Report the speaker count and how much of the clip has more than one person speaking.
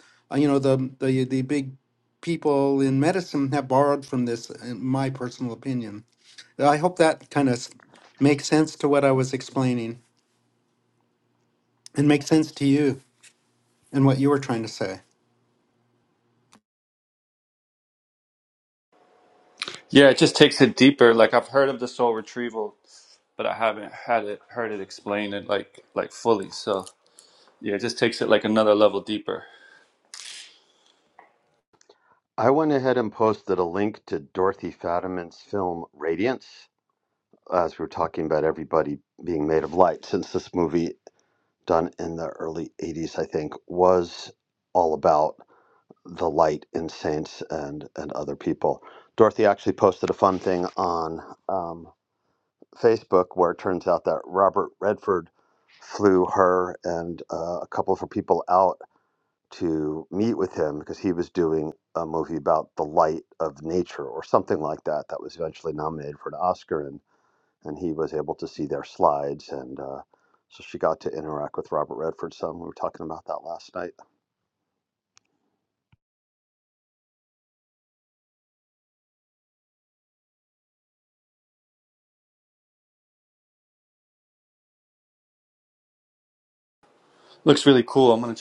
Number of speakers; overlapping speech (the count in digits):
3, no overlap